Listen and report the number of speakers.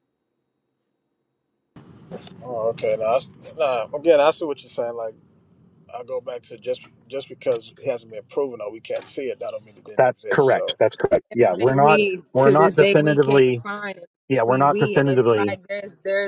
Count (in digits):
3